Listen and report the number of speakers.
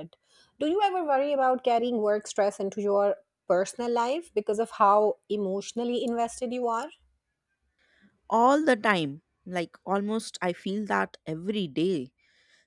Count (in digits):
2